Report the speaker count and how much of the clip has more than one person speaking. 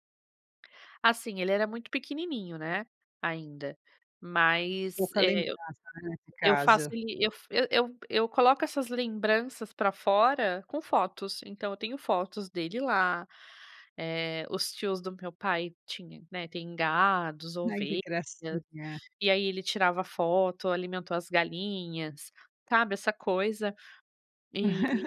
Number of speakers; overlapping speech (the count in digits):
2, about 5%